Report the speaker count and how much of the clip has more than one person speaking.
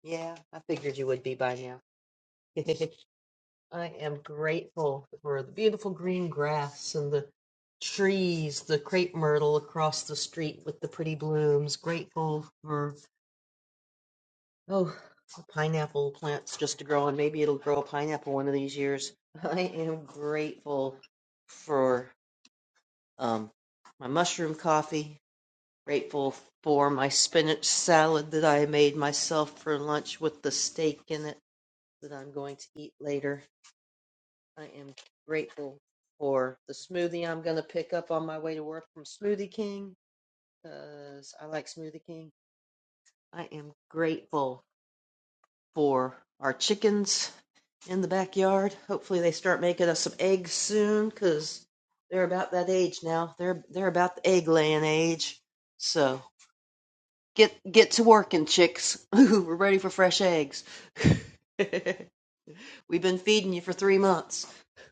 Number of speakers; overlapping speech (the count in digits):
1, no overlap